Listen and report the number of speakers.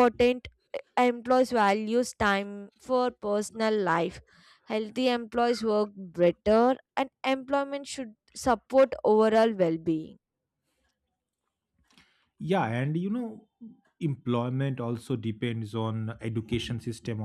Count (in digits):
2